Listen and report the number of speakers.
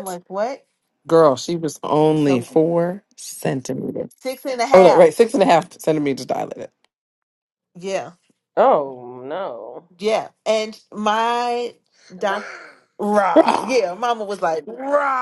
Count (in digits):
3